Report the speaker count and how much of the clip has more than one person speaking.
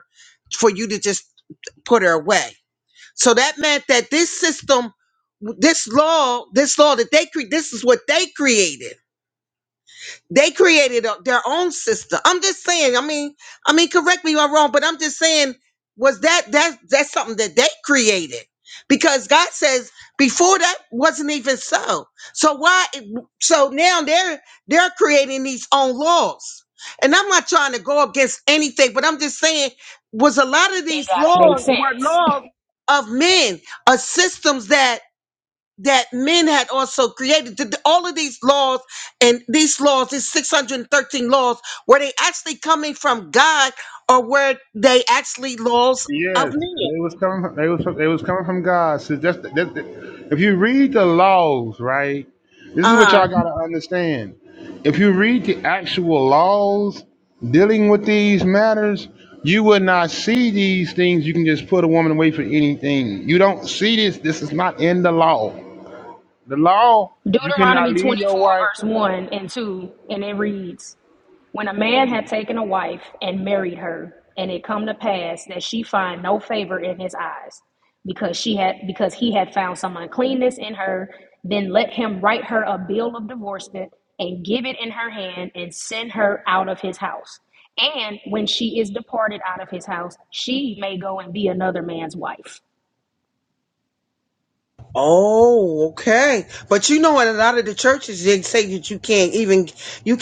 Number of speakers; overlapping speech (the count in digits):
3, about 3%